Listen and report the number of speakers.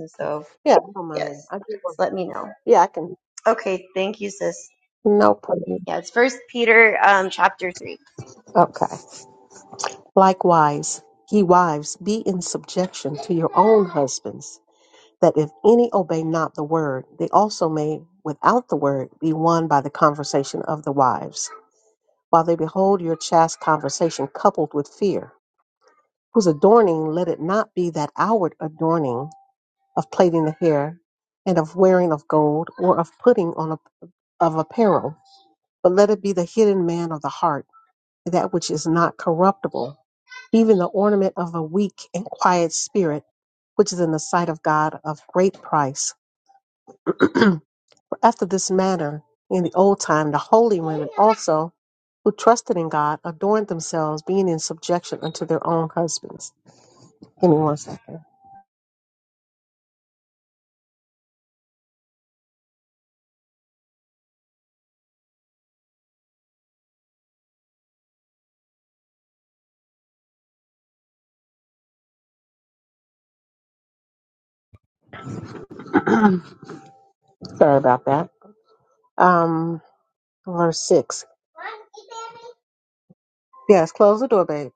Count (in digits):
2